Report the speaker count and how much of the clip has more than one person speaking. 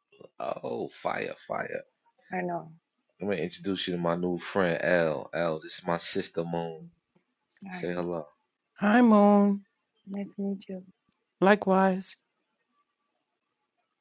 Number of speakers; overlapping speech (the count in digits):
3, about 1%